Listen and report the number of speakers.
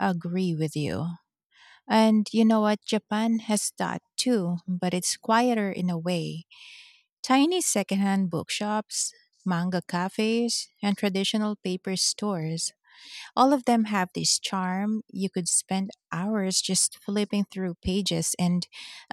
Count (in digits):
1